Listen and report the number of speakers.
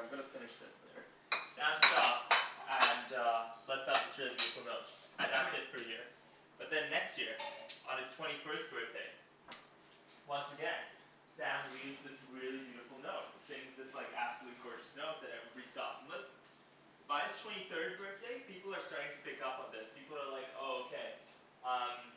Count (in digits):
1